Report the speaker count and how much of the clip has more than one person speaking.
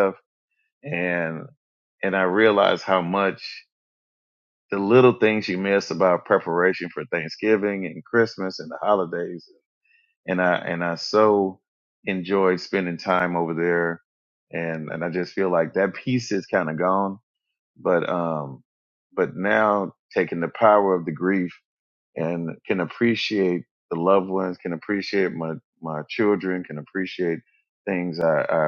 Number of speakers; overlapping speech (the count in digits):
1, no overlap